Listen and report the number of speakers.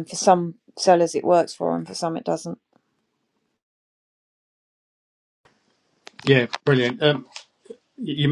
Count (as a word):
two